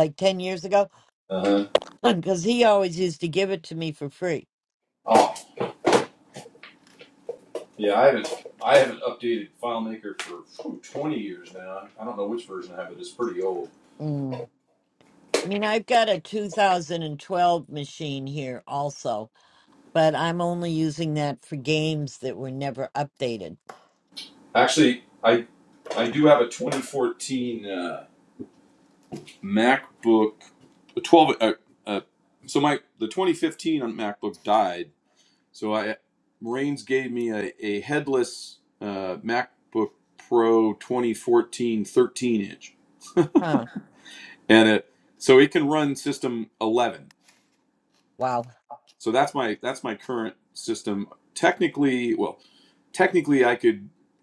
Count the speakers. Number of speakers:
two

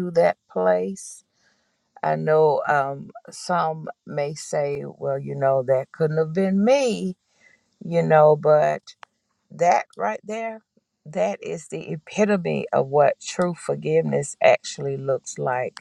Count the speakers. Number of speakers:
one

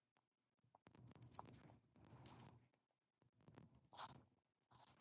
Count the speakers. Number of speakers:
zero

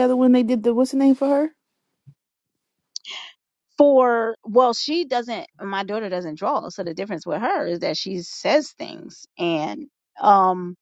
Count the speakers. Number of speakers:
two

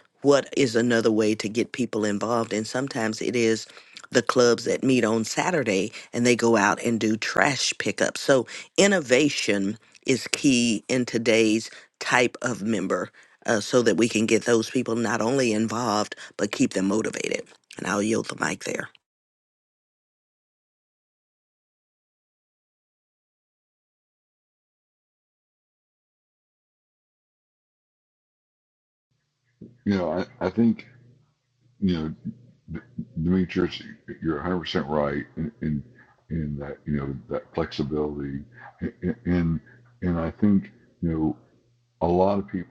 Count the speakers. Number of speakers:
two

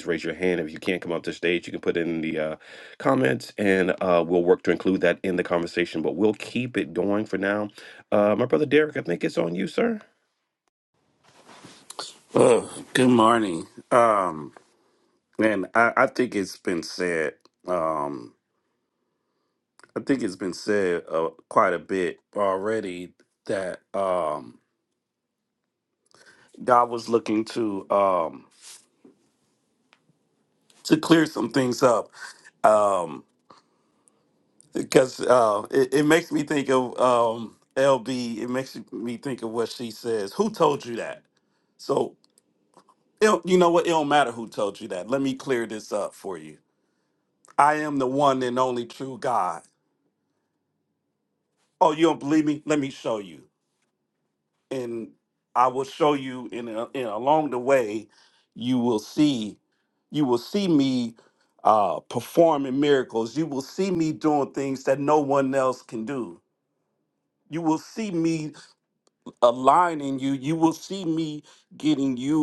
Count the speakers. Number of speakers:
two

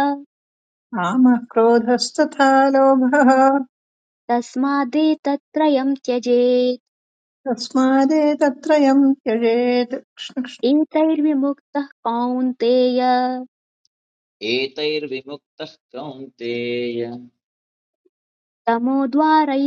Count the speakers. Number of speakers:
three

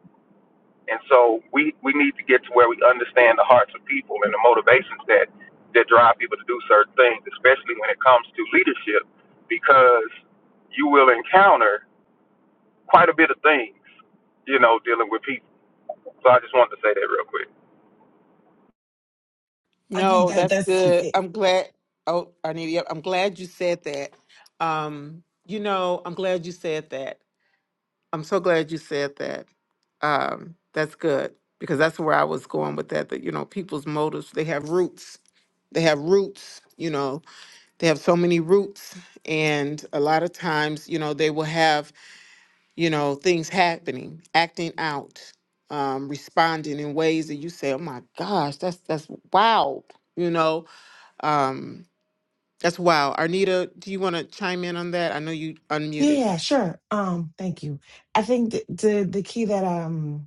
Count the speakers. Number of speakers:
three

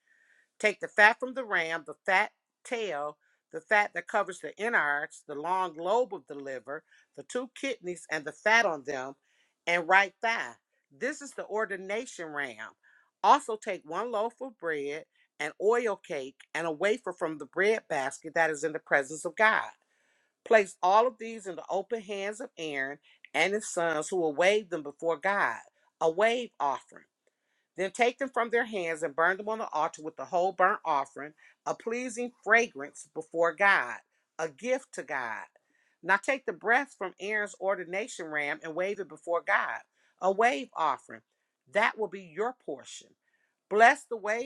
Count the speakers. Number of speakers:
one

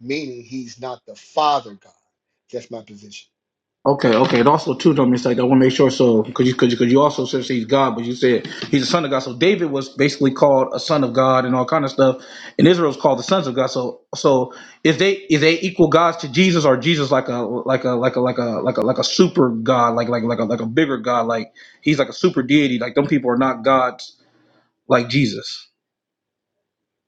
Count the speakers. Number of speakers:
two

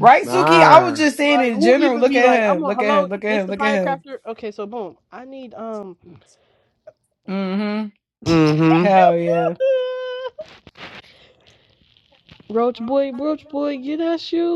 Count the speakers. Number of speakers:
three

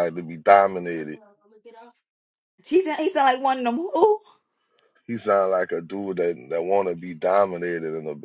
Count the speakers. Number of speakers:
two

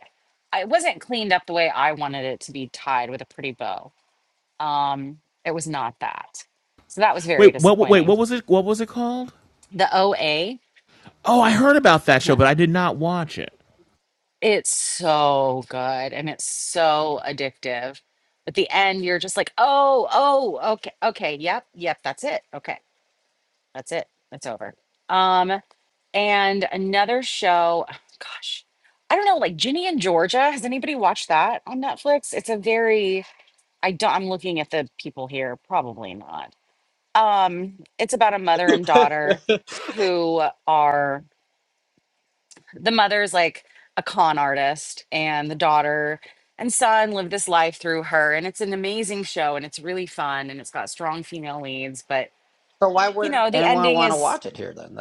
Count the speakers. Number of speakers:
three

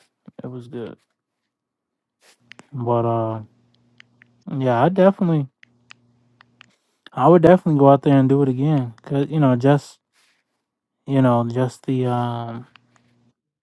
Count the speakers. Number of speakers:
one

